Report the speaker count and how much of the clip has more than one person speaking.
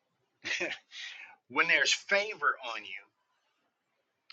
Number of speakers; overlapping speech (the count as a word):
one, no overlap